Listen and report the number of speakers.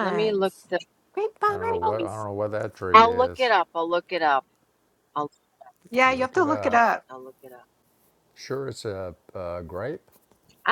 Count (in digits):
3